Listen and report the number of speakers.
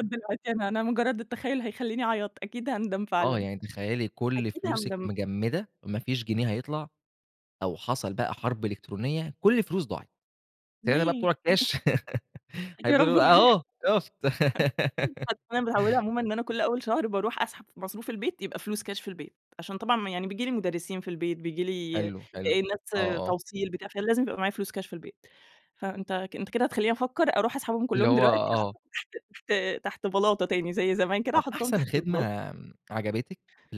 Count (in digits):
2